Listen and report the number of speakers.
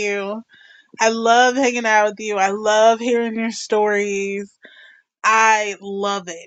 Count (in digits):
1